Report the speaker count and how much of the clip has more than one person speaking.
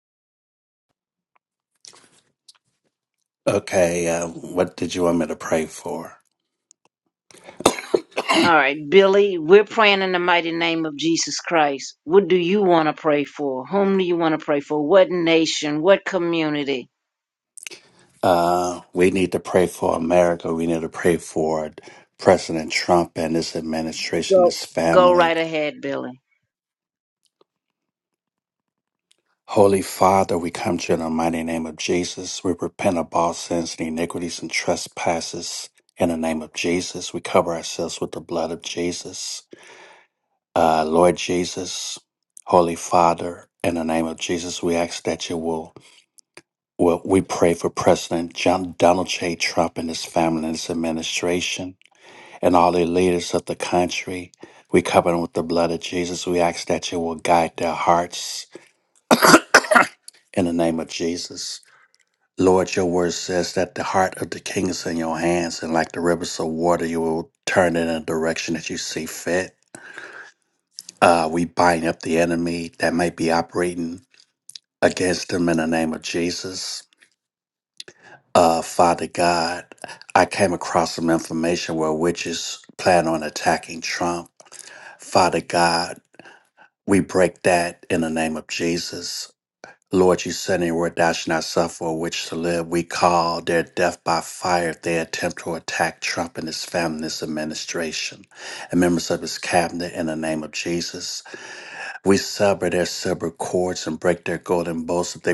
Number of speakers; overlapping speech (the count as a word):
two, about 1%